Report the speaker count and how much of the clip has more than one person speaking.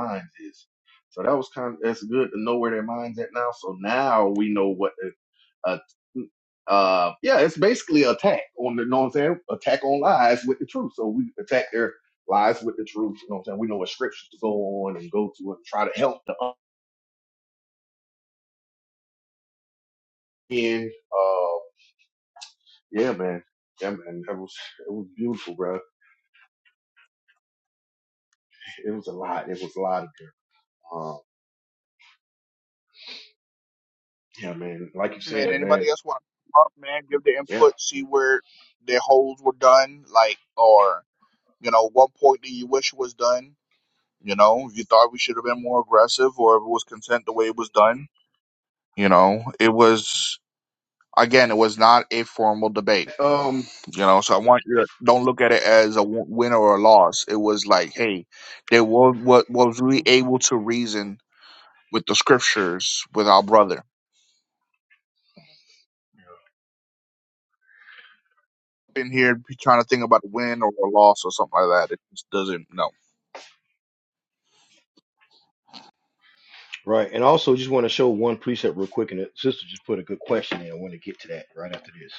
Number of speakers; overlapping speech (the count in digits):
3, about 1%